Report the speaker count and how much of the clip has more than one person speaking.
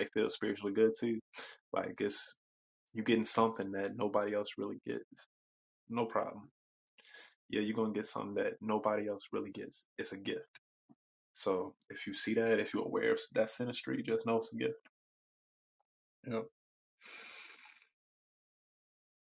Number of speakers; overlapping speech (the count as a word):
one, no overlap